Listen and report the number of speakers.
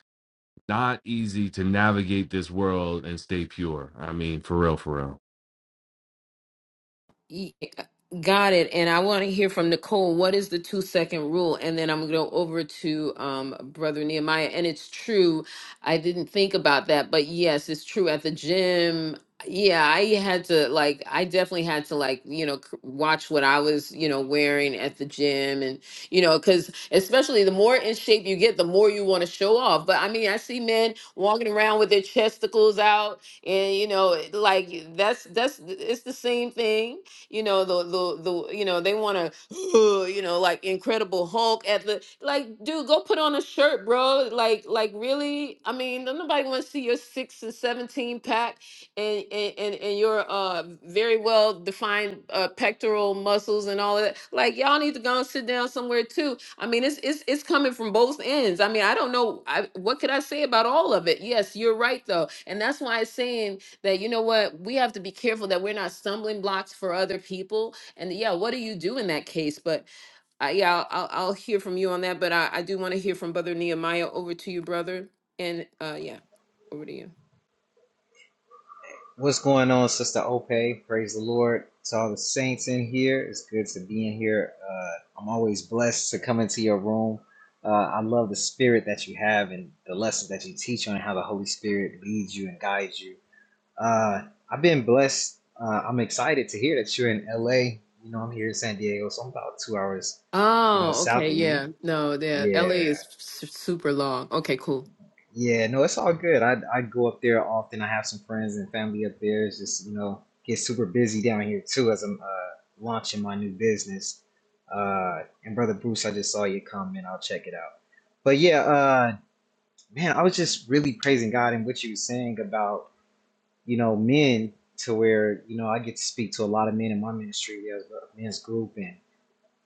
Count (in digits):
3